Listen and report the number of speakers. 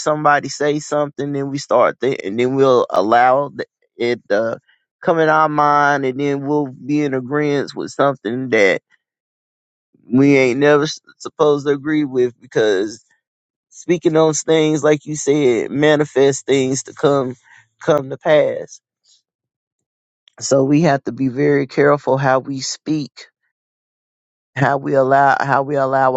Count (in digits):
1